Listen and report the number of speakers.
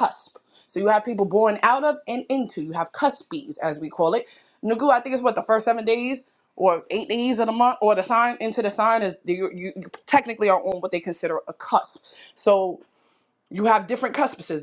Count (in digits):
1